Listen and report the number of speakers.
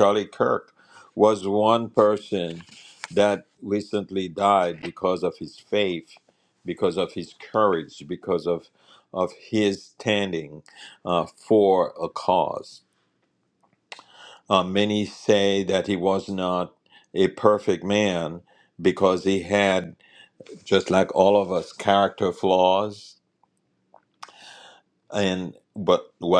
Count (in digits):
1